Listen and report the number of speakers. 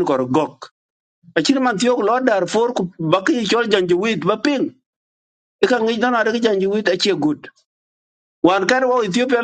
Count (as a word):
one